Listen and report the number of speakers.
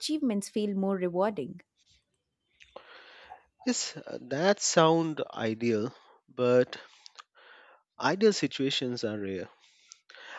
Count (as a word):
two